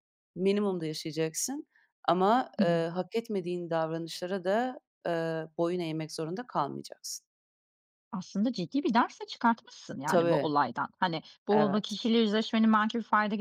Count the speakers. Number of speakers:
2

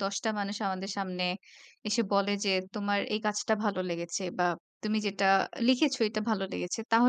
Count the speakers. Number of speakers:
1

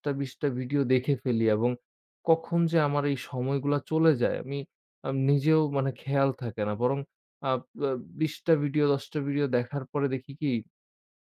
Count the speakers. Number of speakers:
1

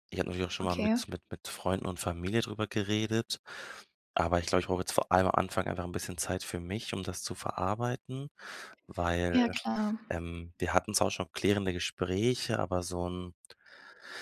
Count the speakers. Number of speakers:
2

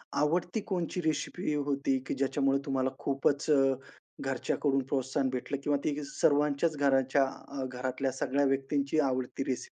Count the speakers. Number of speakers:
1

